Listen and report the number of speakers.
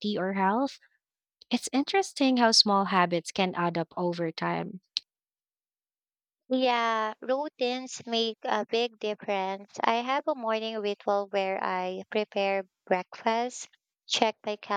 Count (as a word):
two